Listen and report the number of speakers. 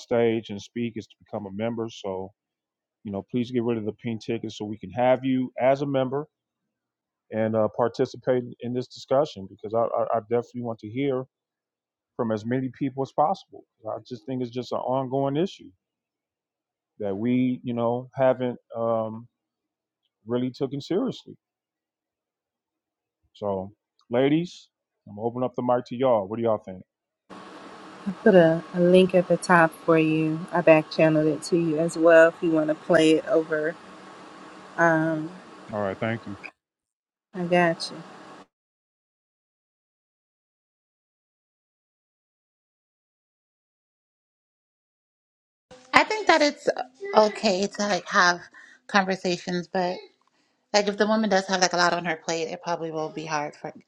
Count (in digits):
3